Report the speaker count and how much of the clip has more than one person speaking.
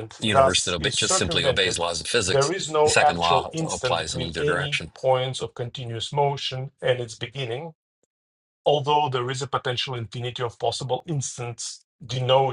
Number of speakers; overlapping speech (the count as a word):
two, about 31%